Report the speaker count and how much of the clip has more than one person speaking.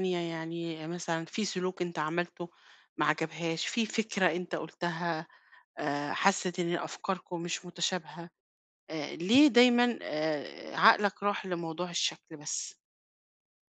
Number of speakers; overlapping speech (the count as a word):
one, no overlap